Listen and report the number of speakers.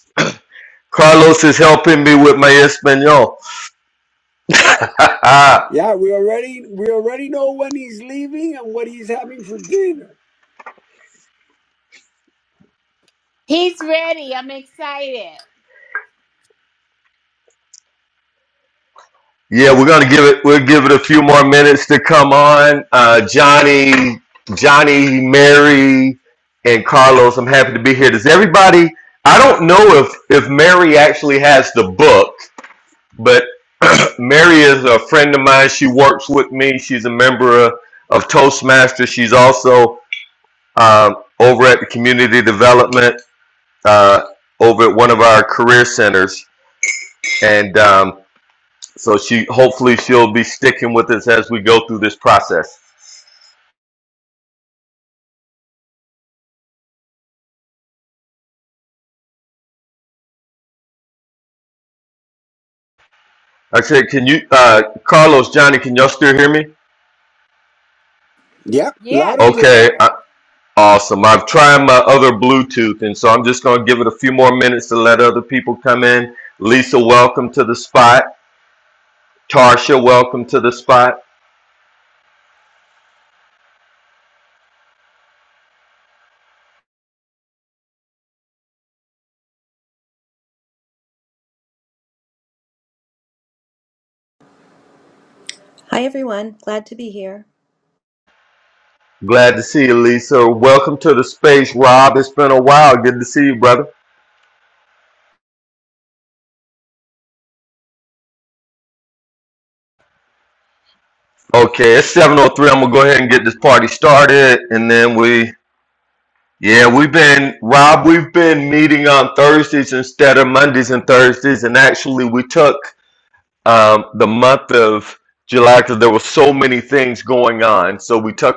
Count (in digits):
4